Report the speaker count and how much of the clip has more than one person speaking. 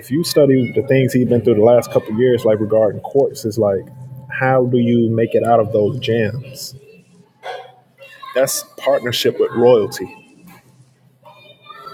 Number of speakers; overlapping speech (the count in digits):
1, no overlap